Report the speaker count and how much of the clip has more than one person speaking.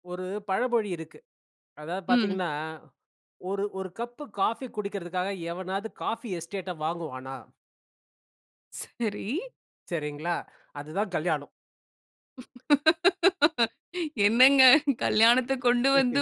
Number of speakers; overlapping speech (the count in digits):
2, about 2%